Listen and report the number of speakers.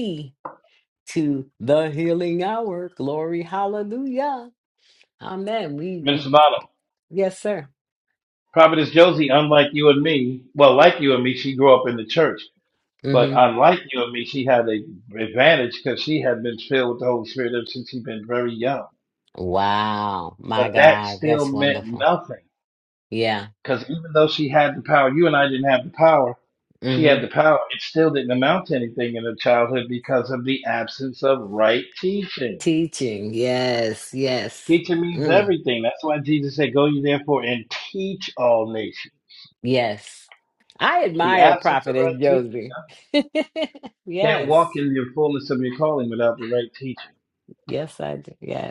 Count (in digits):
2